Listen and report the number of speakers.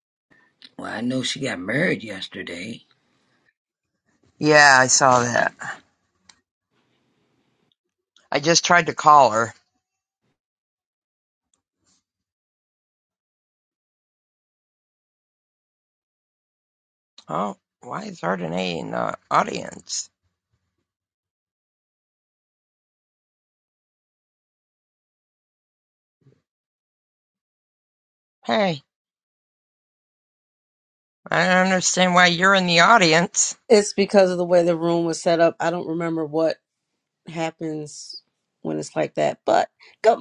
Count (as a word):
three